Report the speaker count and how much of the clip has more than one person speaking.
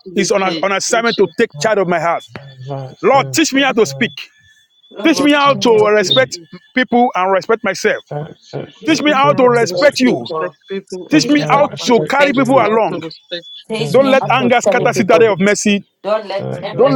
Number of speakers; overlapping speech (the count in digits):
4, about 56%